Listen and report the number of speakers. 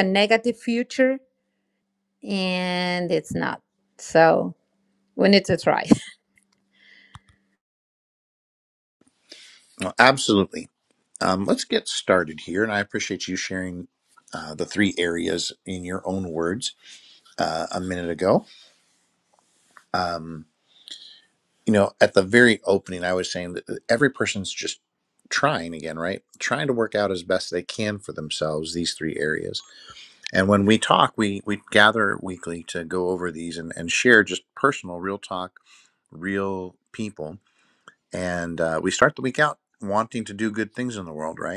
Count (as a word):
two